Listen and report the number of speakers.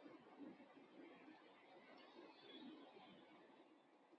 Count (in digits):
0